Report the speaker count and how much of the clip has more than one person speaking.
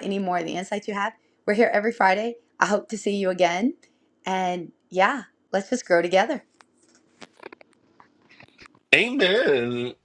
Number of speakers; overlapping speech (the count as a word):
two, no overlap